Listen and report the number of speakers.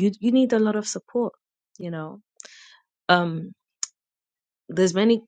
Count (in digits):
1